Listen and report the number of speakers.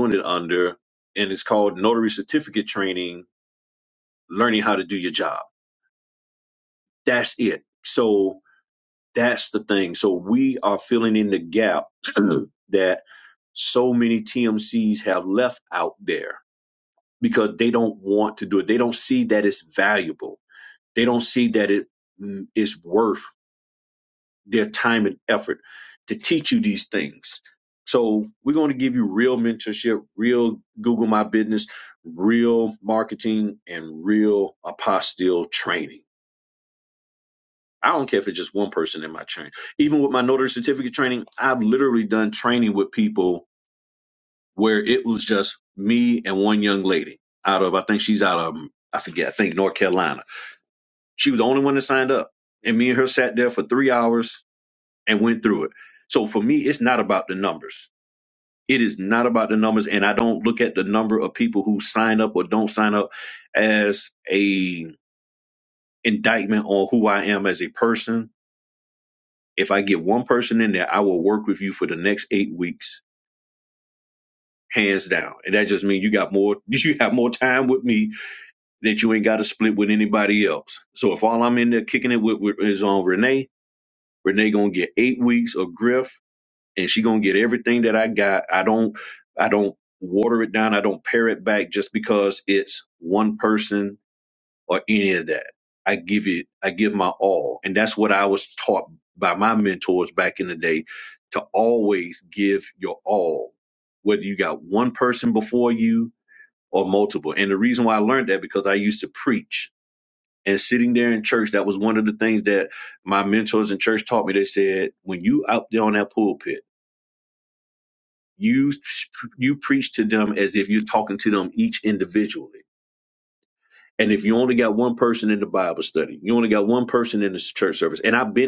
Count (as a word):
one